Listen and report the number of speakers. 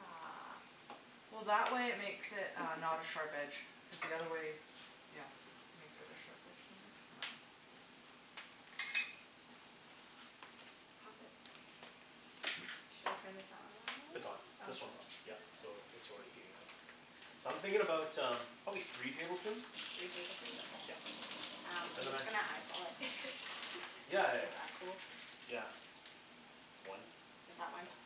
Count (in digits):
3